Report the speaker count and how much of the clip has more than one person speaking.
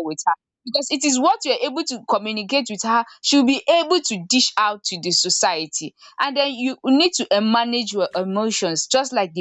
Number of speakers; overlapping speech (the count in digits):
1, no overlap